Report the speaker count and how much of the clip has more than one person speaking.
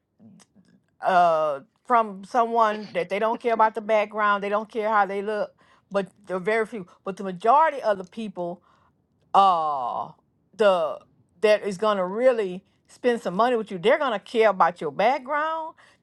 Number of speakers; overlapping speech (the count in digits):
1, no overlap